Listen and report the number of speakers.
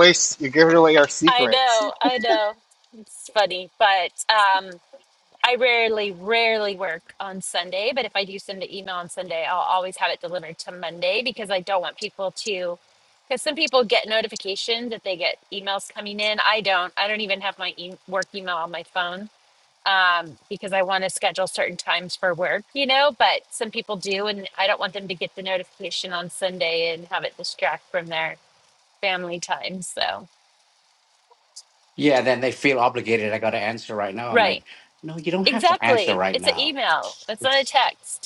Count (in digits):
3